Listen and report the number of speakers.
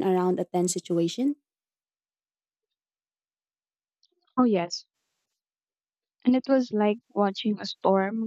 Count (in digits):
2